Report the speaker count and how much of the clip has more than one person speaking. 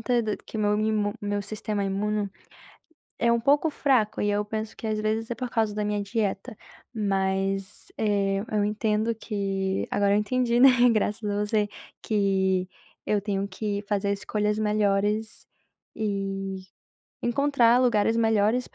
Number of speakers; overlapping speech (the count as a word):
one, no overlap